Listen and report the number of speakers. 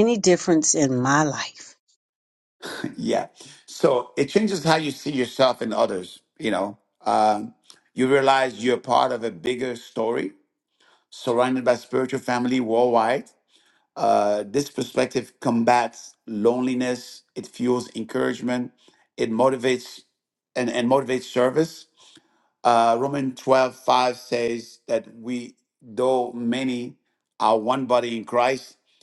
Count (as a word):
two